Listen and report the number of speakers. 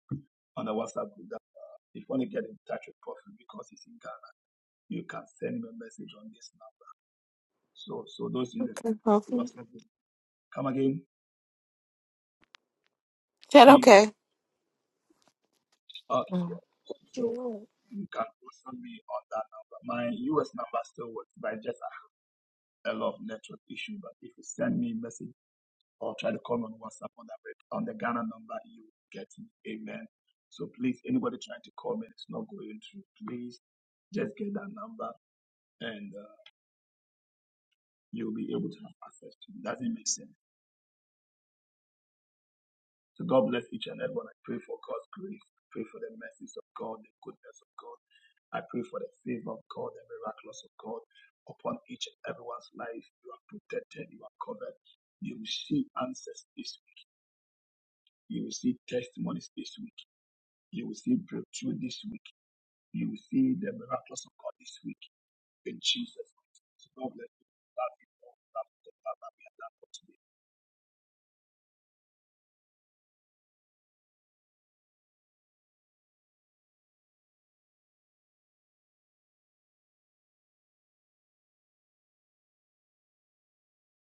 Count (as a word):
two